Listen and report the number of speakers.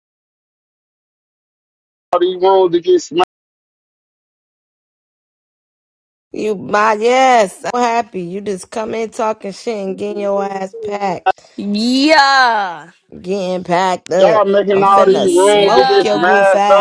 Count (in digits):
3